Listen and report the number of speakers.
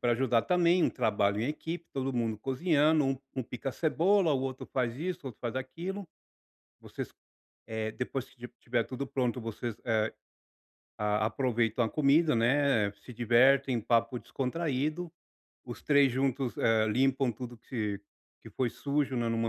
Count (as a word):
one